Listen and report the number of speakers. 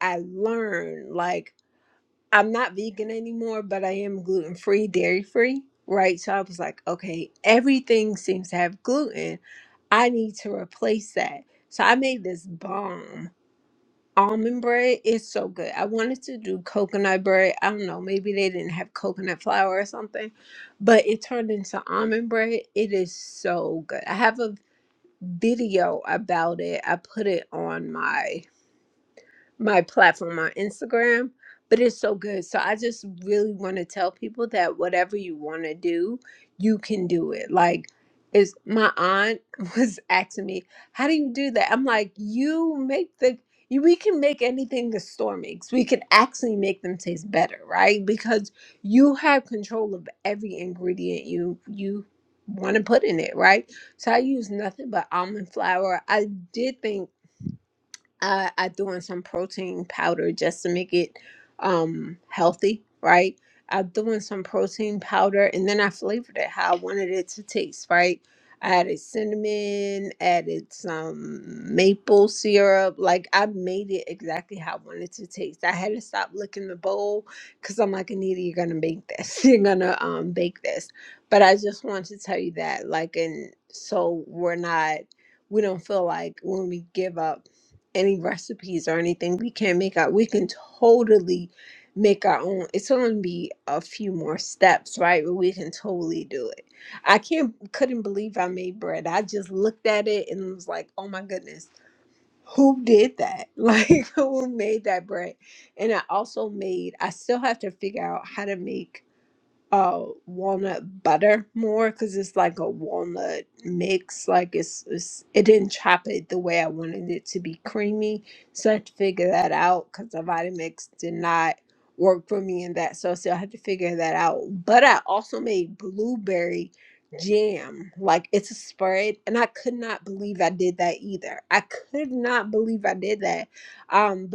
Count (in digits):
1